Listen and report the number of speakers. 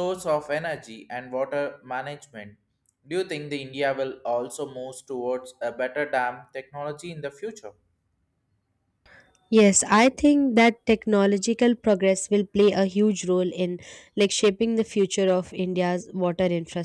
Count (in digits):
2